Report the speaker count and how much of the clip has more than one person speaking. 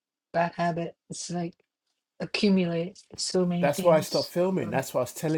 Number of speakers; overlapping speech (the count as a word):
two, about 13%